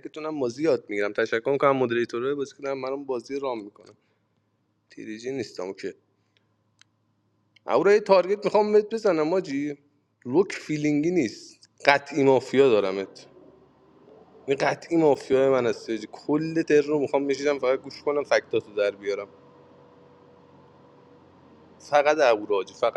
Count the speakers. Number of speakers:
1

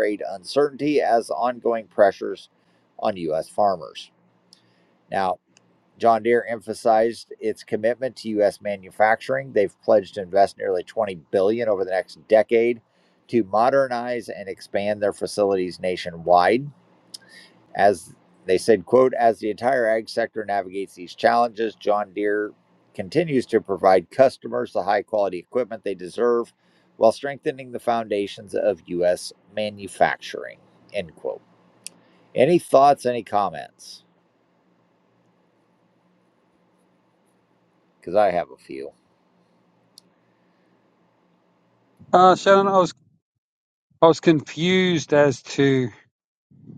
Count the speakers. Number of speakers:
2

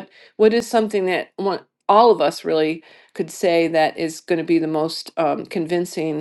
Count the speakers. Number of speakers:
1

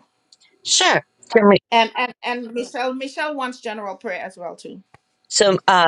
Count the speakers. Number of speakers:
2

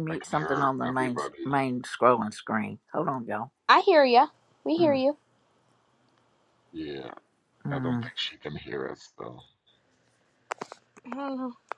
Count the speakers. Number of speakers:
3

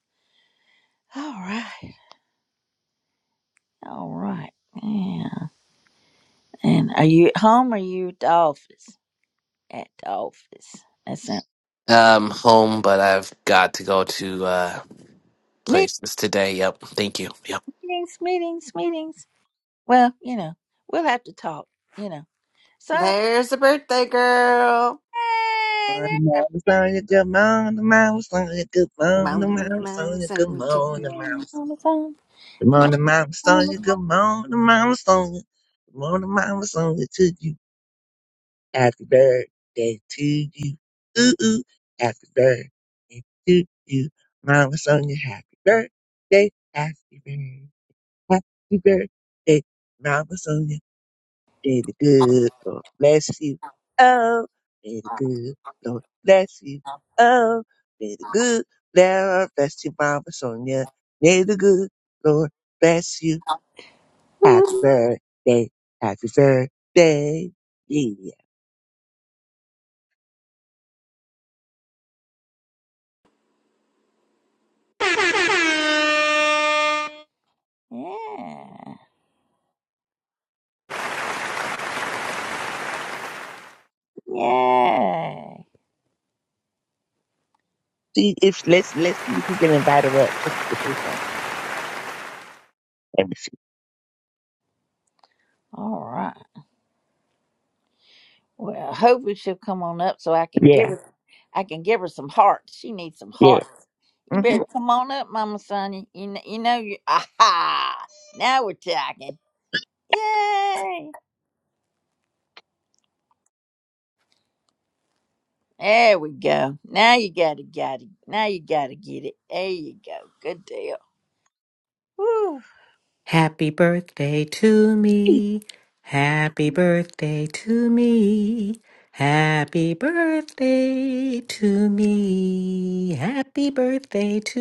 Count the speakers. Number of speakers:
5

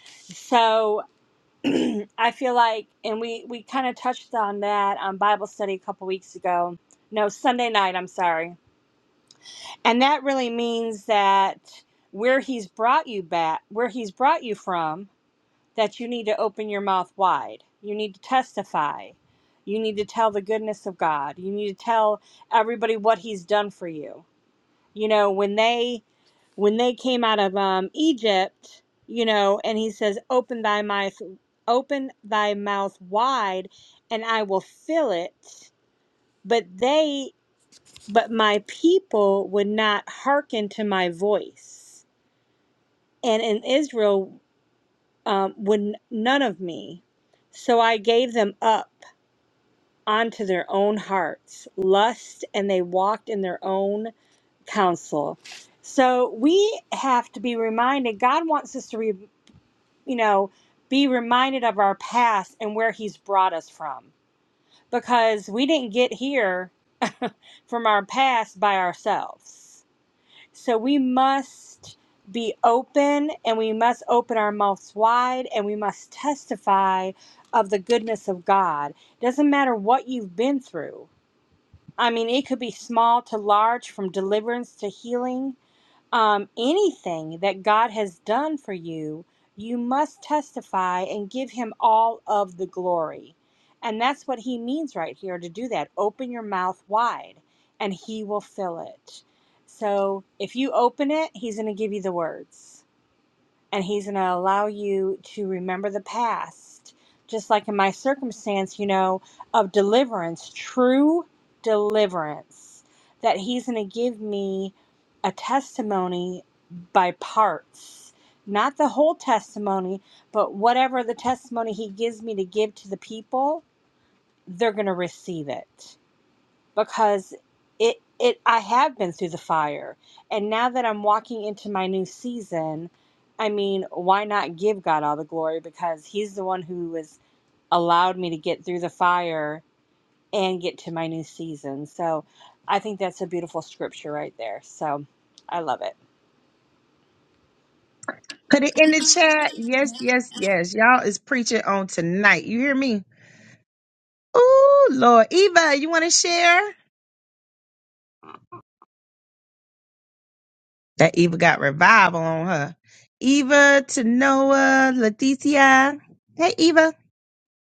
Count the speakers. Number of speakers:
2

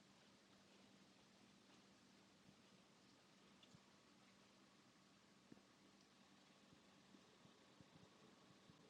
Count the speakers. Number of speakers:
0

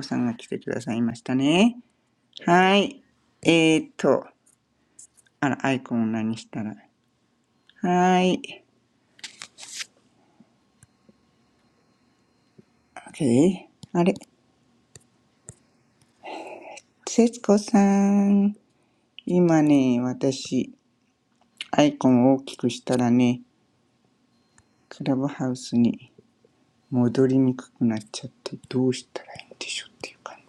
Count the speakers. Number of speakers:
1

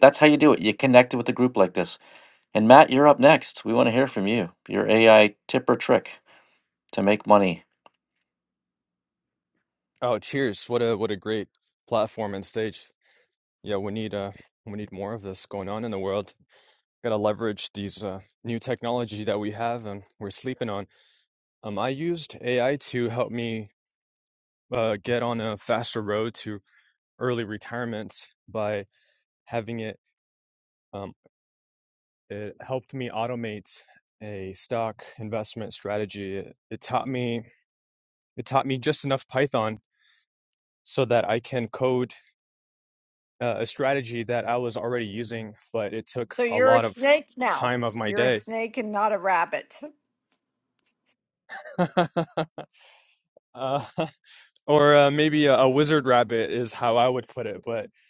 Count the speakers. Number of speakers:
3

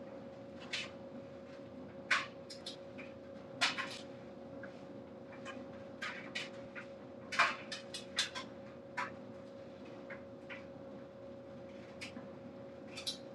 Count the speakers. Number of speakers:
0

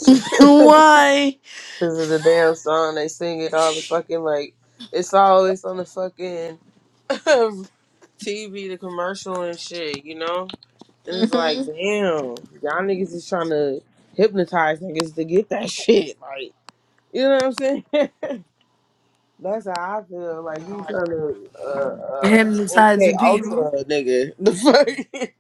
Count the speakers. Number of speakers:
2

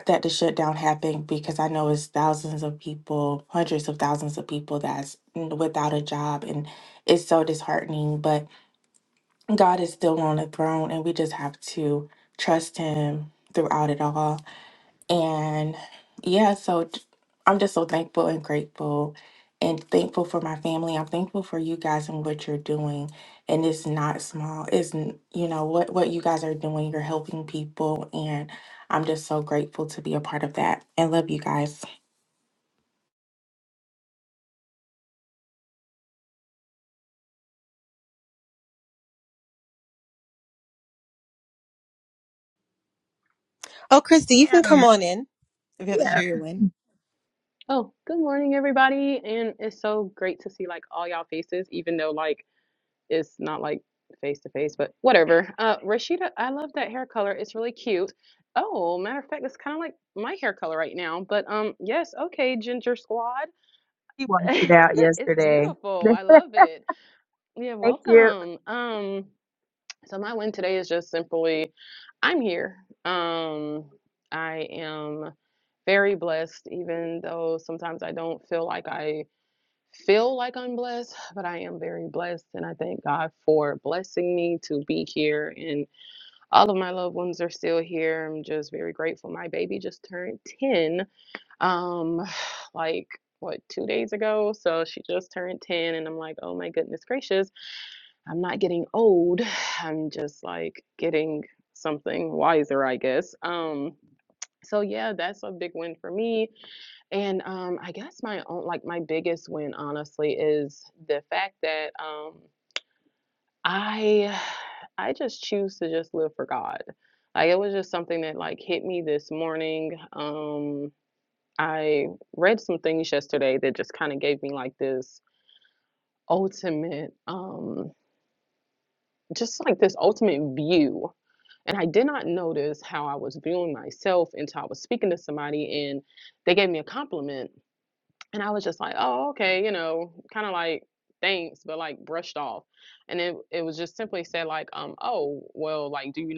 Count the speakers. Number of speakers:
4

